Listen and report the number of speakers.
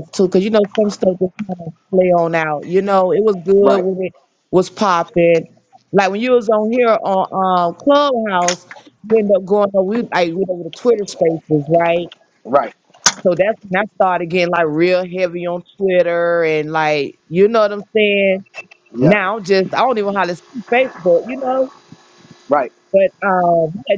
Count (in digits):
2